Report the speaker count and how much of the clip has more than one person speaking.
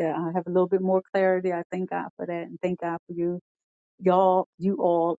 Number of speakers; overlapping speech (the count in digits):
1, no overlap